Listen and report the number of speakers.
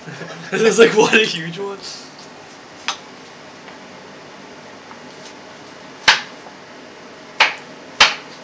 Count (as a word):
one